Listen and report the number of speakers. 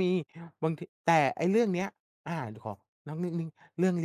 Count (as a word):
one